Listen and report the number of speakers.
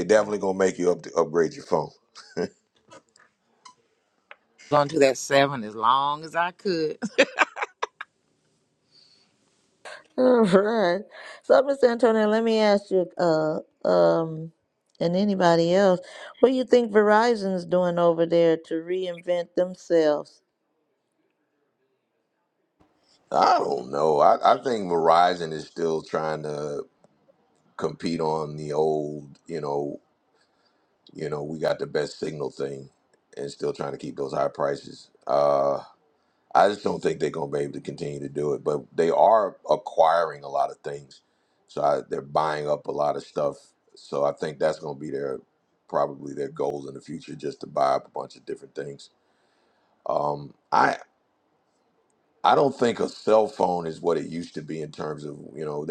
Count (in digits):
3